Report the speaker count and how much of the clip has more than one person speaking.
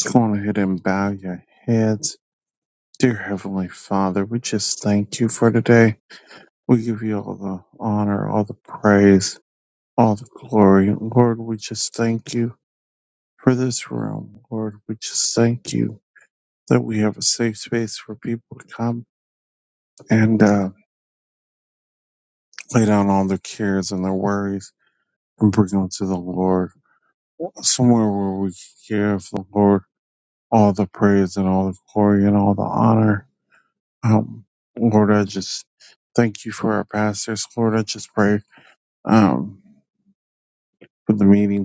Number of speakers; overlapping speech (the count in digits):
1, no overlap